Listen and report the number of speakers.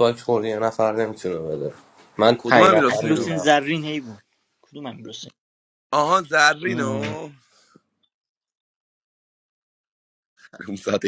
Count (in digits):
3